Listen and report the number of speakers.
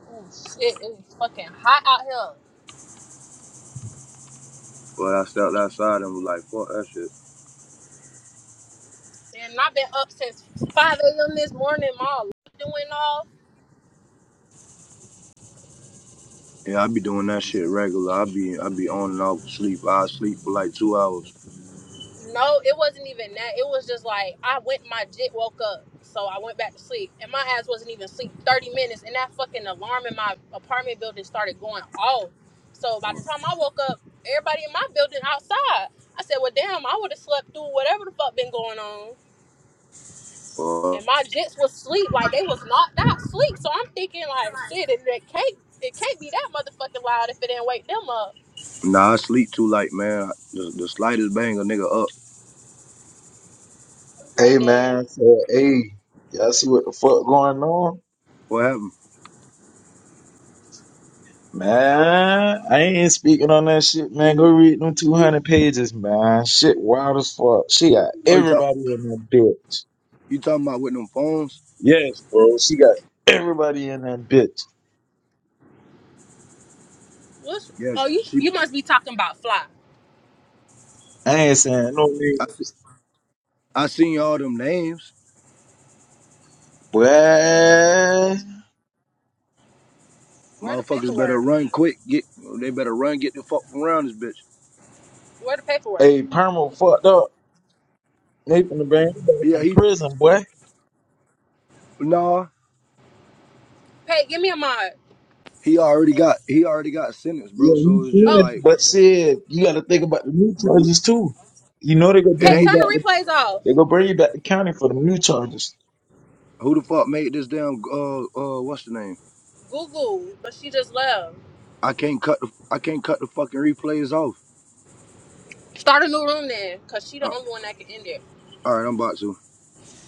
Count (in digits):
3